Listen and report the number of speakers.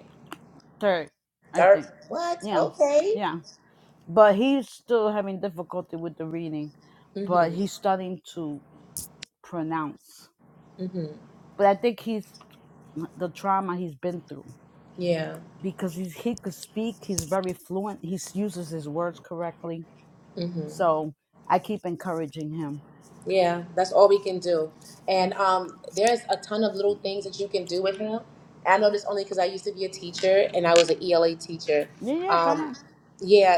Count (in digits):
2